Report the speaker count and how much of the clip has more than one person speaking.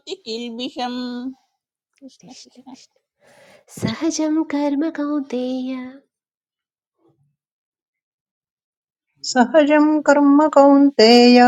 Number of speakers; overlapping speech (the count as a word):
three, no overlap